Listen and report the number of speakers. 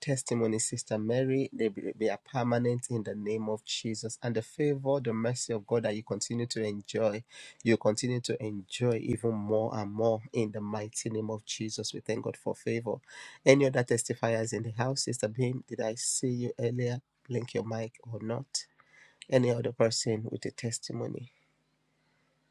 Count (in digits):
1